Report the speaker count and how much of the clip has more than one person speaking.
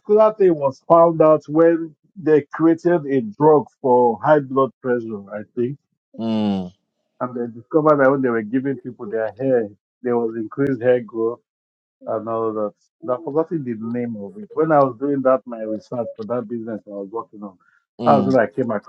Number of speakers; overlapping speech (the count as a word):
two, about 3%